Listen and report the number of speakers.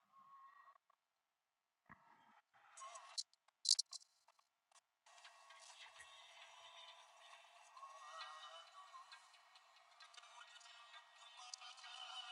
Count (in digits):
0